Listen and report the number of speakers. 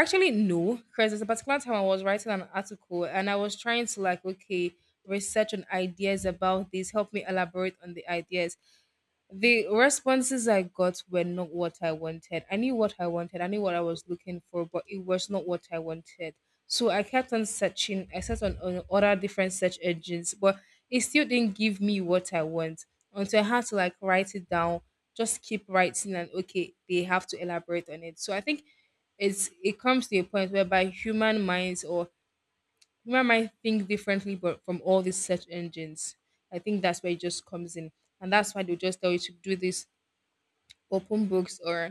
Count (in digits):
1